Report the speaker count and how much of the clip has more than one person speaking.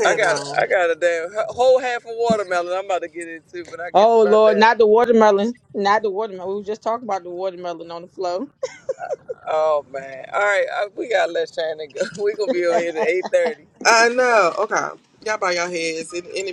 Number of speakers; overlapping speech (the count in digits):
3, about 8%